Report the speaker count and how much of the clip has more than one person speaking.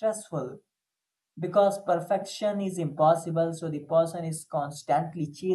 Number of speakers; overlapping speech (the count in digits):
1, no overlap